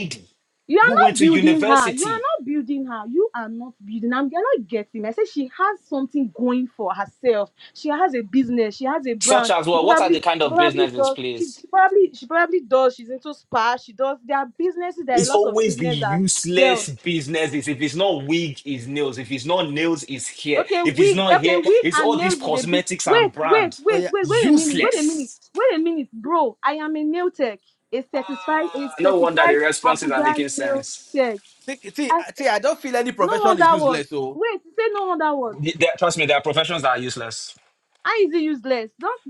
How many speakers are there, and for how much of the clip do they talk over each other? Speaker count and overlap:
three, about 31%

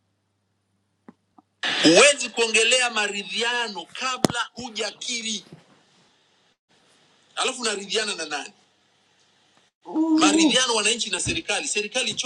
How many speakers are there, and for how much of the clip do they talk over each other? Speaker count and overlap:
one, no overlap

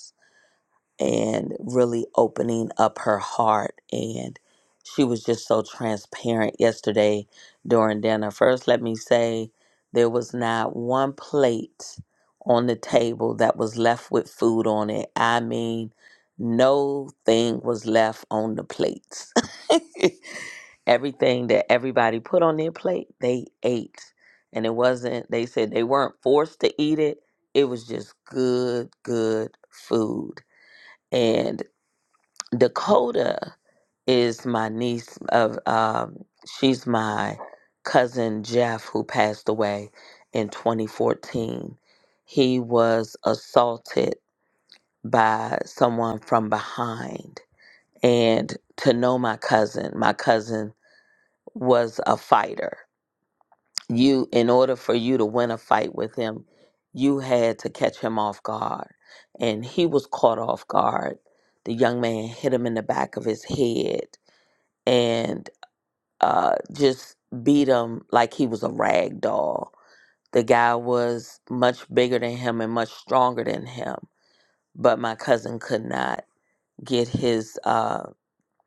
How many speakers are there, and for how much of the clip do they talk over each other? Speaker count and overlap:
one, no overlap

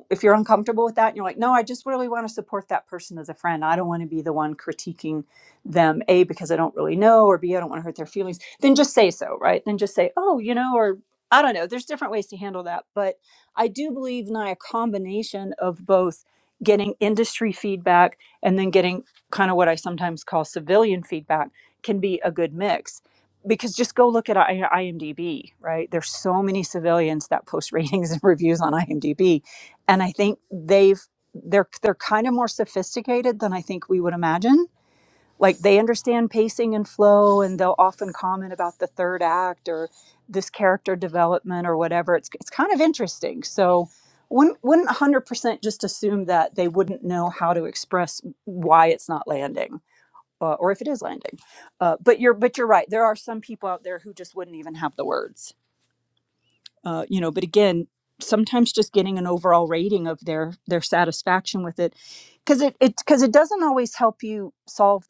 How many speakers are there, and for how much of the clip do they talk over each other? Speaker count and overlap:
one, no overlap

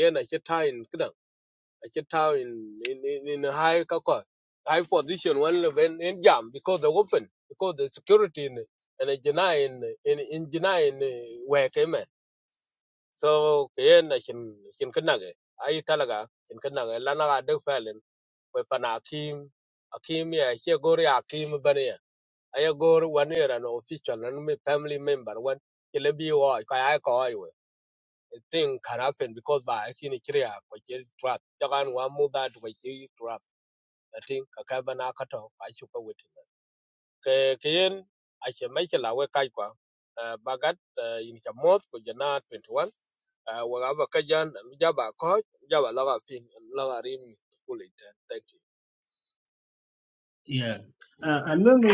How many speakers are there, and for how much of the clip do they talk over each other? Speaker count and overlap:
two, no overlap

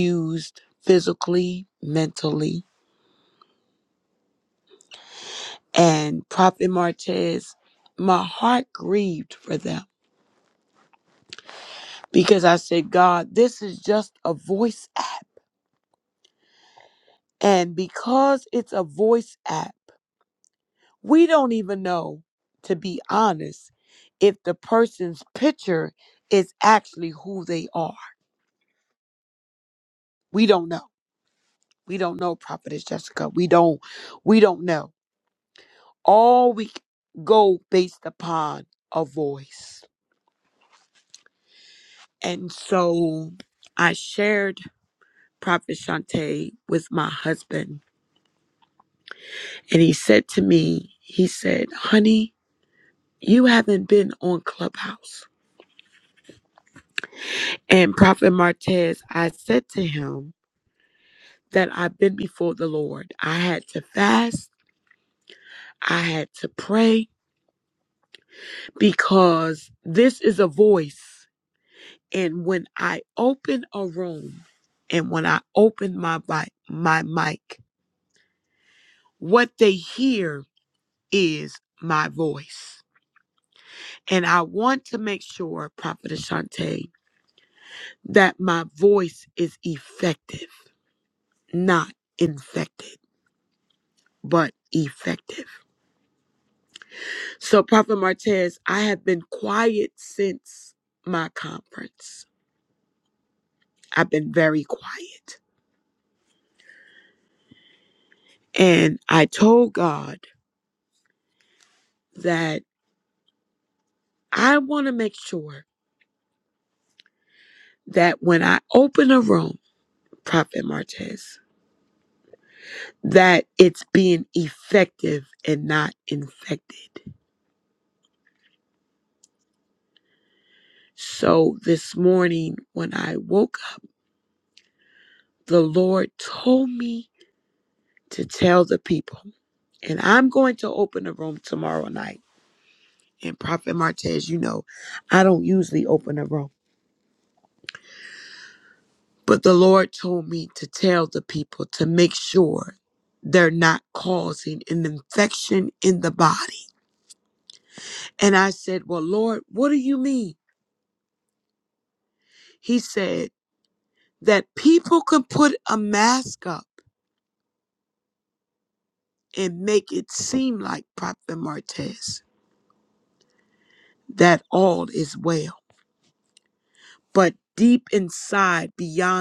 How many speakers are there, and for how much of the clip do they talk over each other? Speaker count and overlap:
one, no overlap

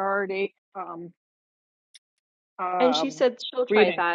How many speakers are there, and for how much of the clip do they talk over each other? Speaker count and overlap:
two, about 17%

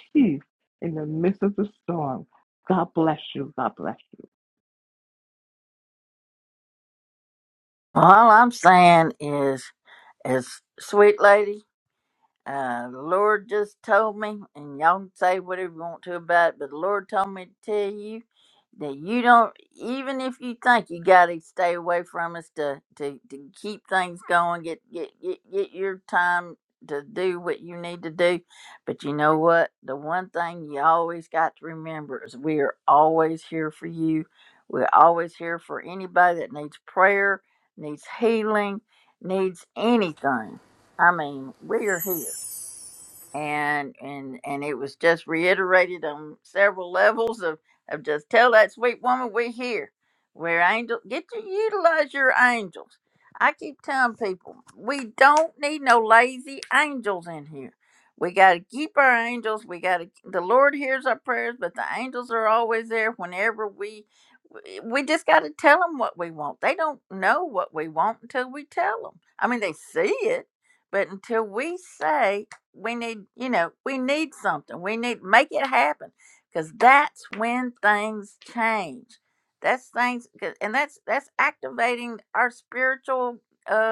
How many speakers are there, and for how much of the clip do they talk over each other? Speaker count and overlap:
two, no overlap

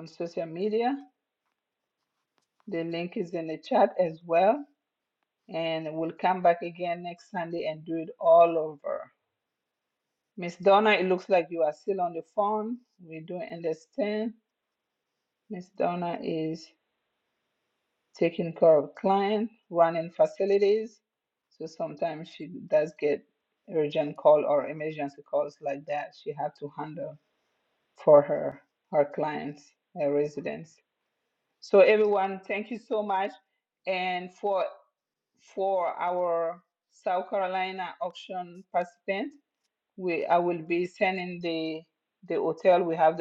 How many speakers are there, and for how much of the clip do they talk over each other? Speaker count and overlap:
one, no overlap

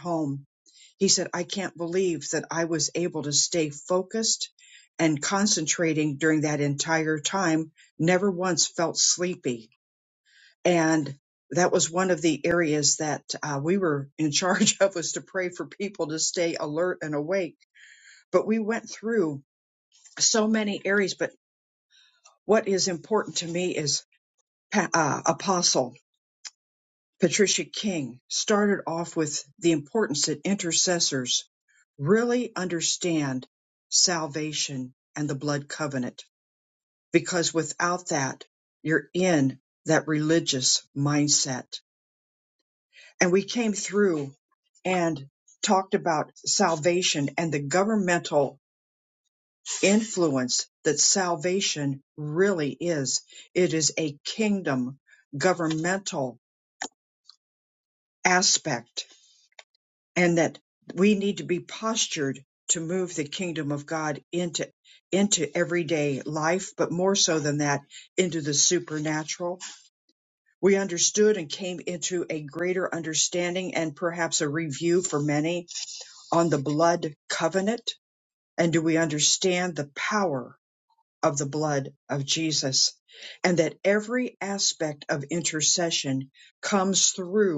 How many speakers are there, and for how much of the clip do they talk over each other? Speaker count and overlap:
one, no overlap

